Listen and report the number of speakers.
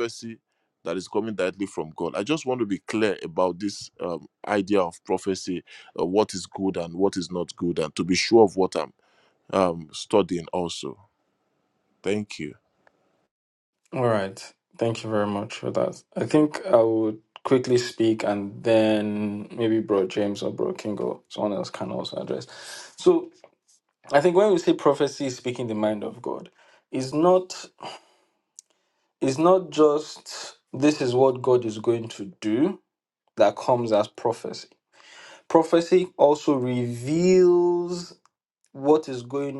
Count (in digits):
2